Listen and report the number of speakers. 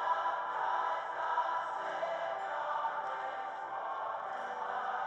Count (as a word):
zero